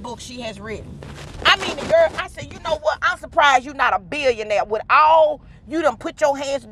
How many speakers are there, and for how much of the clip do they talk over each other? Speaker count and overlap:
one, no overlap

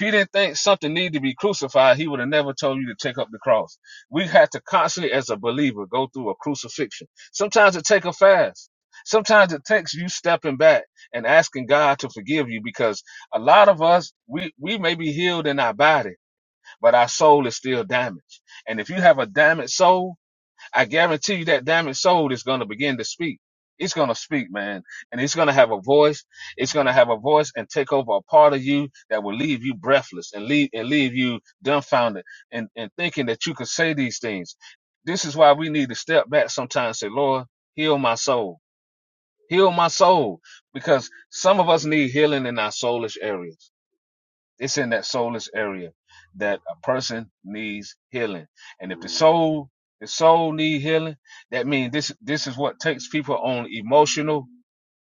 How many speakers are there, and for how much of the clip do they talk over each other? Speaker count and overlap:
one, no overlap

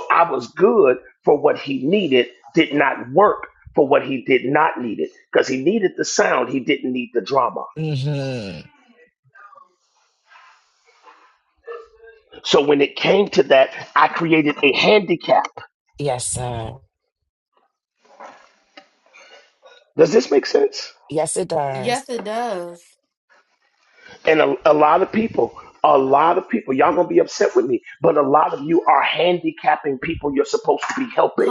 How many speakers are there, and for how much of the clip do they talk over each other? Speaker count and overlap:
three, about 1%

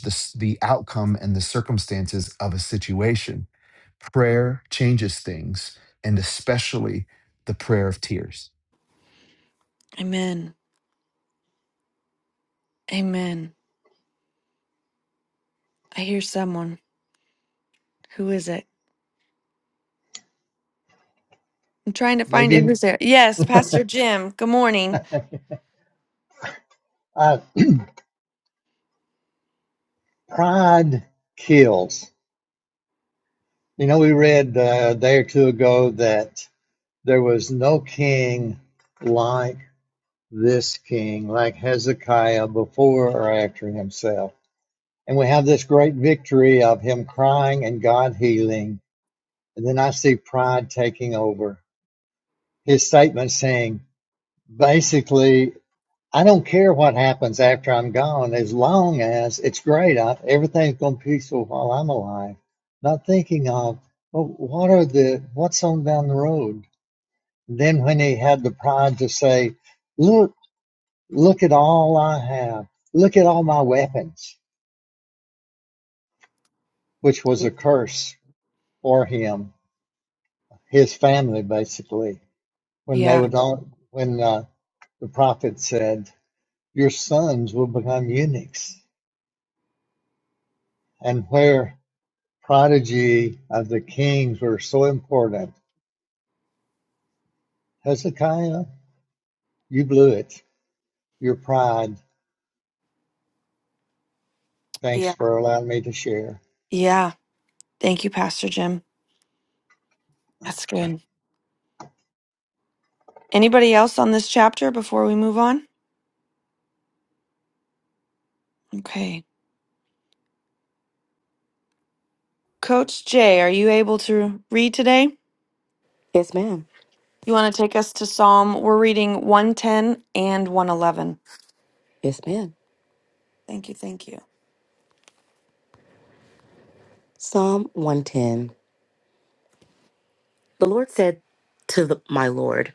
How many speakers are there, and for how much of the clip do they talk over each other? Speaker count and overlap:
four, about 1%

